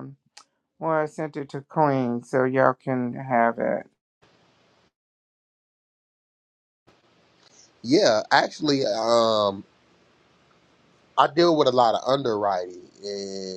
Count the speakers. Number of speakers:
2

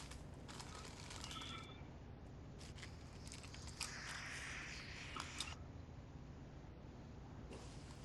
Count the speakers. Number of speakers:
0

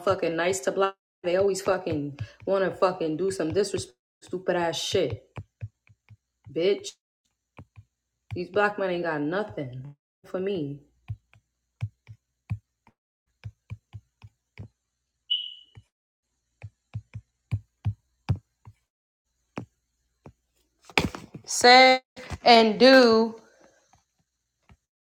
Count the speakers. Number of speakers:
1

